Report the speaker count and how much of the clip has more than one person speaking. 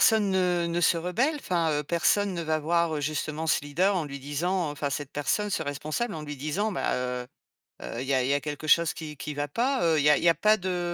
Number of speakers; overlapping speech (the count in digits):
1, no overlap